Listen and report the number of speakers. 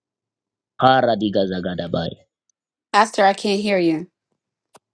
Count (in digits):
2